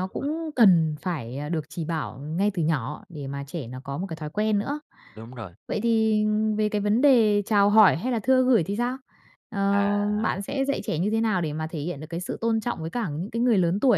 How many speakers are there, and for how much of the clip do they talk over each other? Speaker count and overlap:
two, about 6%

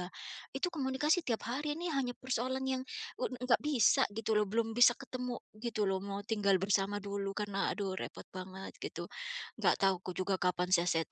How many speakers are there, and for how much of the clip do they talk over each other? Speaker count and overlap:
one, no overlap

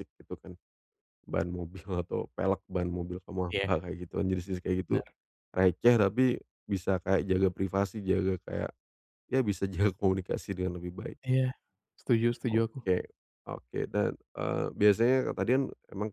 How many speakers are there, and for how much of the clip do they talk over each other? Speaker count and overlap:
two, about 4%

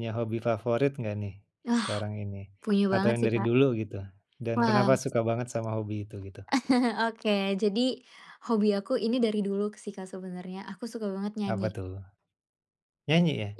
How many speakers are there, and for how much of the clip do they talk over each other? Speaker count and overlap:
two, about 10%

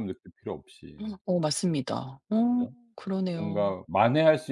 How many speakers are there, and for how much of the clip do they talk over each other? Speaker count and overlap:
two, about 8%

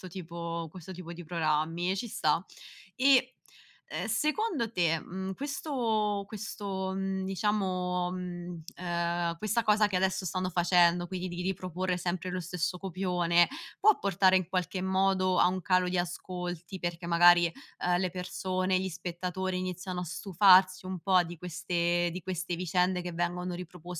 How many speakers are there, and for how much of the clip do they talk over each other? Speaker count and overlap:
one, no overlap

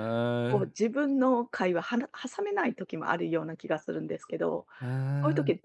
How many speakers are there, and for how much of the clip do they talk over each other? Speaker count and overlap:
two, about 7%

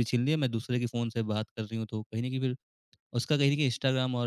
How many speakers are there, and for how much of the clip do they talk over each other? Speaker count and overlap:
one, no overlap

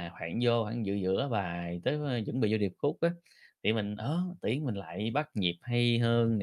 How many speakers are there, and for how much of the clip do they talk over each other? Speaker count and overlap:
one, no overlap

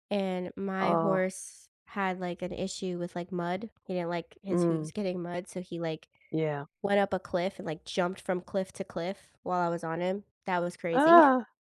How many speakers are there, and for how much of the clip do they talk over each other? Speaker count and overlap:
two, about 10%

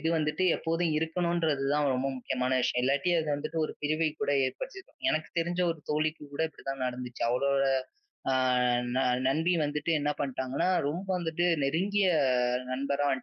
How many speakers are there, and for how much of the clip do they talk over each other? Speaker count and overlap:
one, no overlap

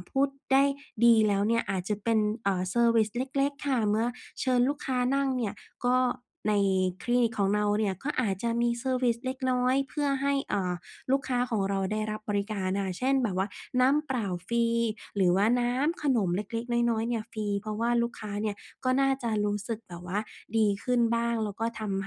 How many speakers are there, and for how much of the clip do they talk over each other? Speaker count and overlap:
one, no overlap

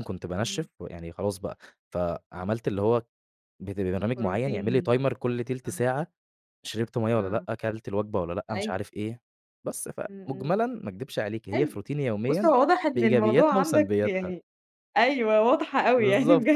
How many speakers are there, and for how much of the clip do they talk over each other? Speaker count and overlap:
two, about 25%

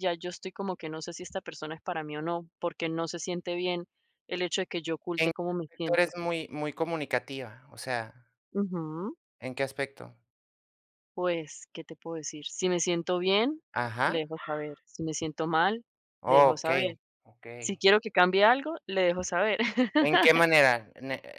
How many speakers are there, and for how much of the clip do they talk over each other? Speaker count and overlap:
two, about 5%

